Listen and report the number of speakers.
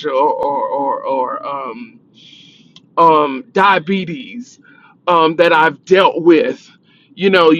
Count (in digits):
1